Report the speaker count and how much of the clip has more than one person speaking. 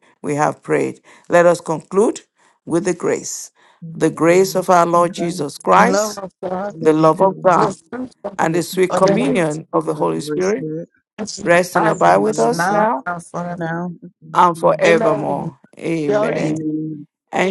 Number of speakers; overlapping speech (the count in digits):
3, about 35%